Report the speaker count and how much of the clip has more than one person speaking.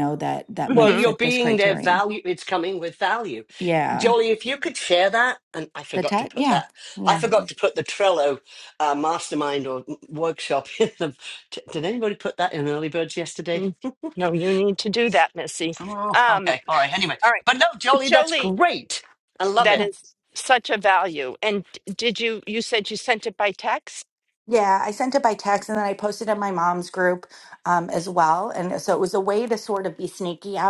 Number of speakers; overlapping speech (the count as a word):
three, about 13%